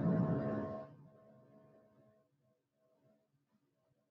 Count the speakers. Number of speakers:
0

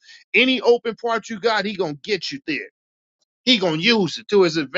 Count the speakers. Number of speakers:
1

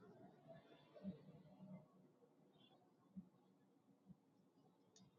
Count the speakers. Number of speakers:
0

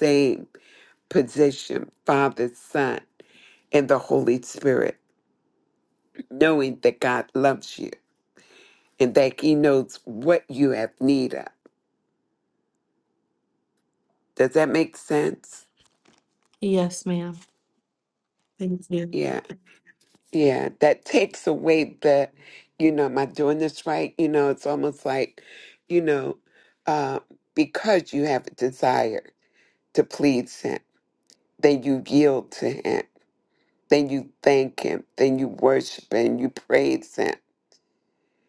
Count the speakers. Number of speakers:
2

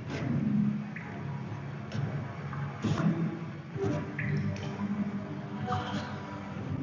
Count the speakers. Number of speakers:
0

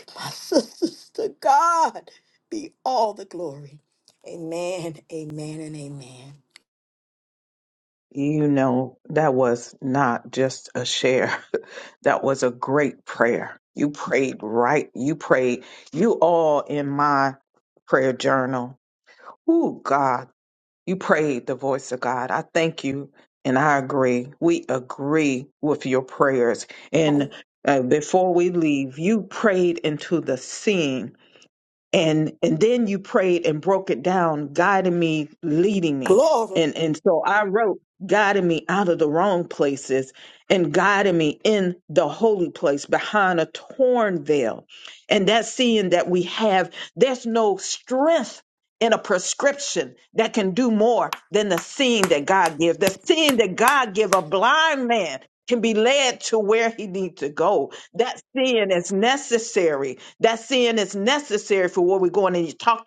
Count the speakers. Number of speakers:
2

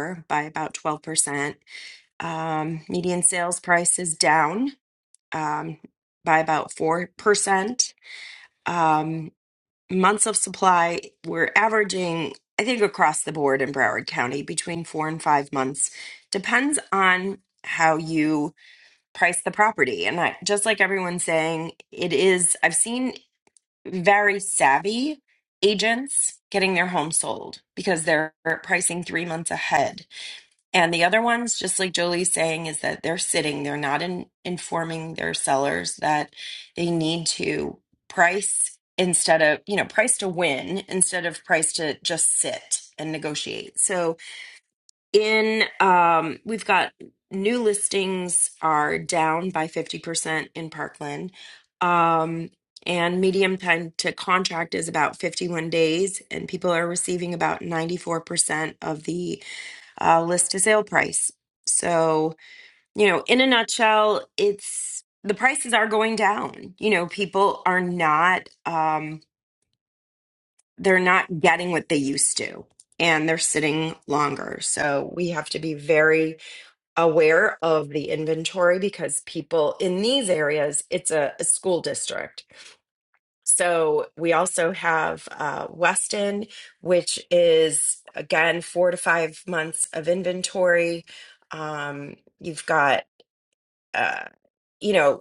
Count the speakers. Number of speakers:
1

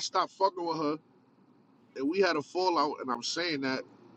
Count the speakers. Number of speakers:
1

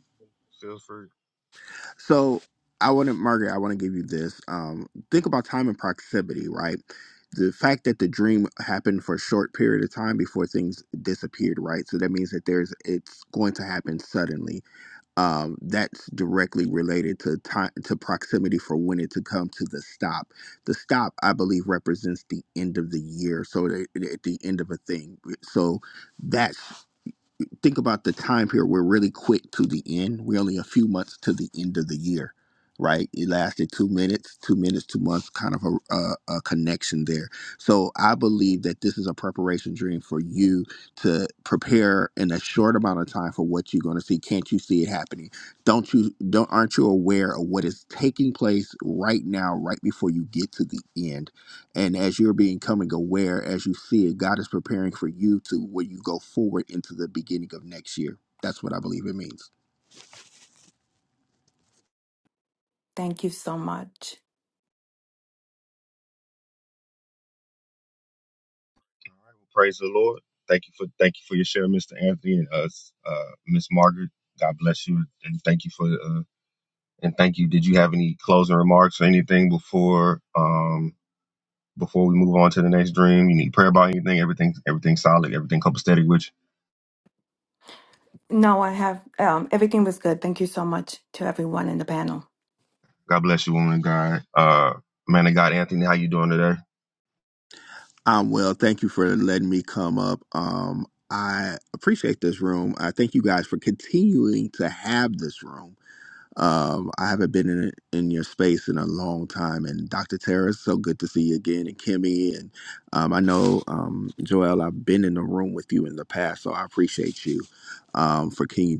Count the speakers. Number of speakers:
3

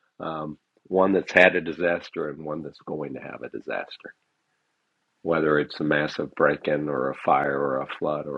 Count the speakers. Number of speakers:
1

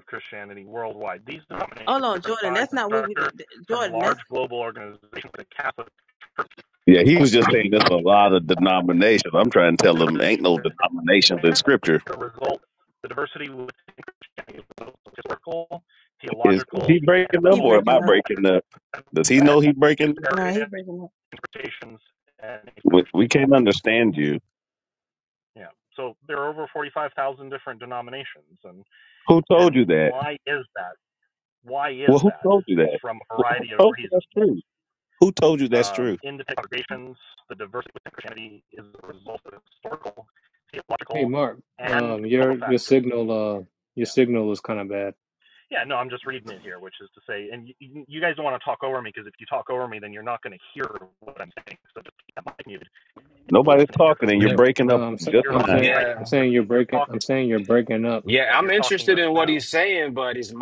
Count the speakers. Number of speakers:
5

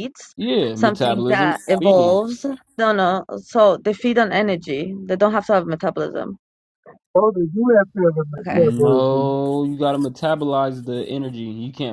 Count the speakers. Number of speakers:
3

